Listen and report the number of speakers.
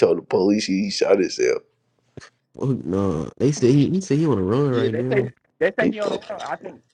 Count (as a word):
three